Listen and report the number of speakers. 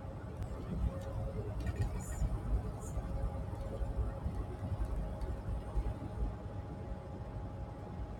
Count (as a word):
zero